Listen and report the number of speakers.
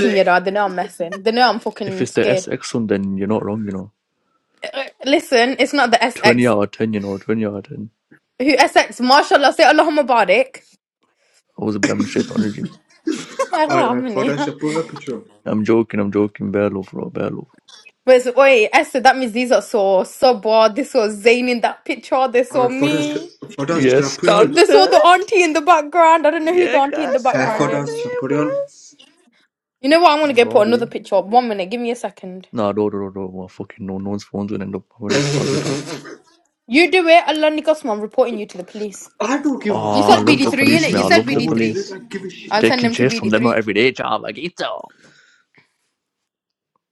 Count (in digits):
3